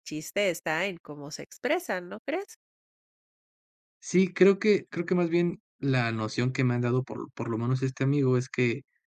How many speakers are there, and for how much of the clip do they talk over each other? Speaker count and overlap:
two, no overlap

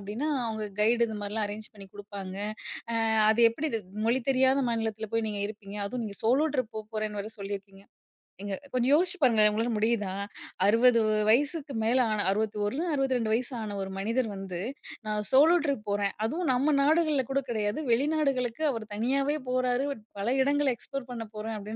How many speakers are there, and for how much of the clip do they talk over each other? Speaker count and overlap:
one, no overlap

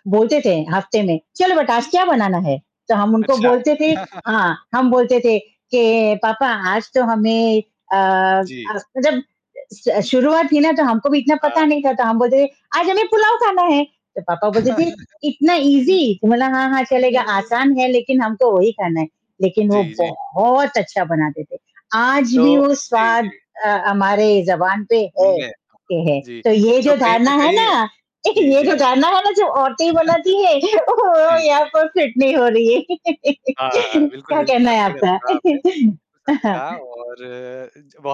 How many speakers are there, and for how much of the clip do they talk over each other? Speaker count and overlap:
two, about 16%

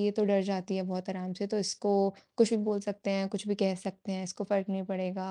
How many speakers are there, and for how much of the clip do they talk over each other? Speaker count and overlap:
one, no overlap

